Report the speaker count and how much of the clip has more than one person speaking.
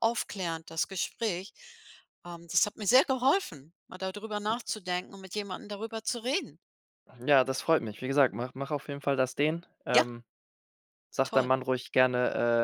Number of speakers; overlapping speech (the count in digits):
2, about 3%